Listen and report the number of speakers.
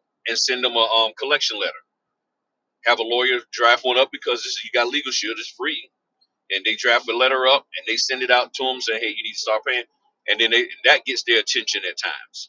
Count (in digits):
1